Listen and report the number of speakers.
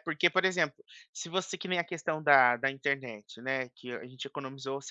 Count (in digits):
1